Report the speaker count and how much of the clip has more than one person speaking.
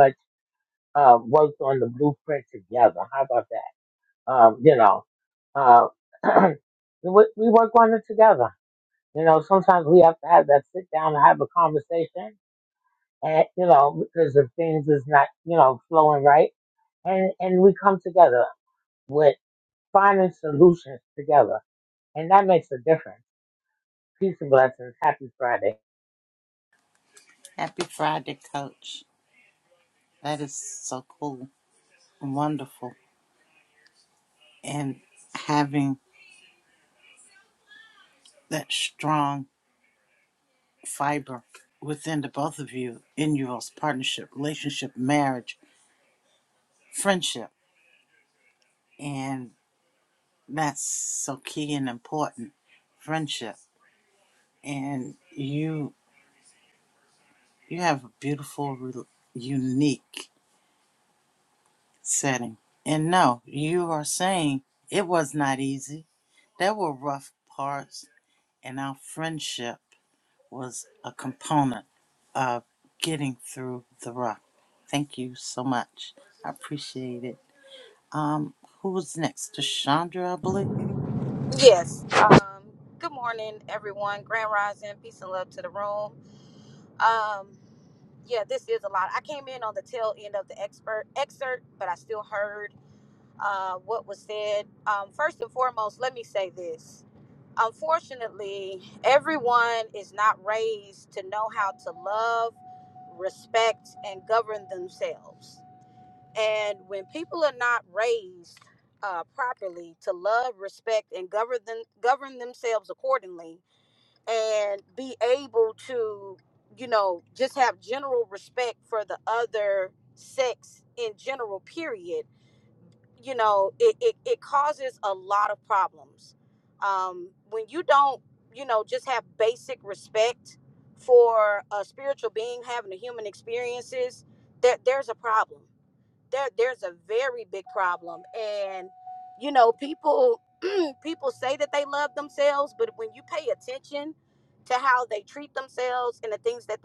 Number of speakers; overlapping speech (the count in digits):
3, no overlap